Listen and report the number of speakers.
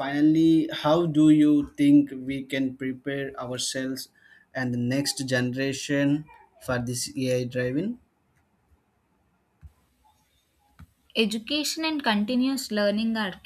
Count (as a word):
two